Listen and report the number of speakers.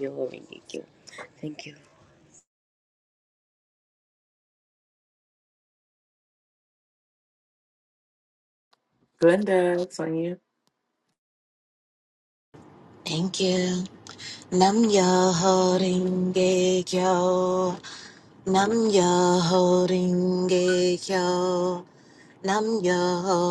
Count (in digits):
3